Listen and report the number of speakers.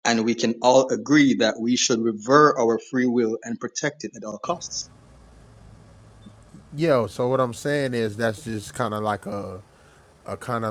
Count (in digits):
2